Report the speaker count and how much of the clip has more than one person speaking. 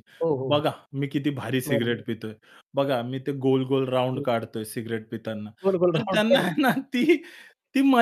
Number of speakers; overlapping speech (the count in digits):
2, about 17%